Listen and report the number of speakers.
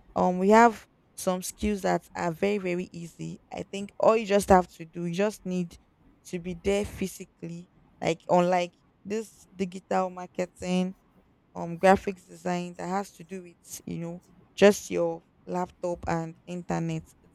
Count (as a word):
one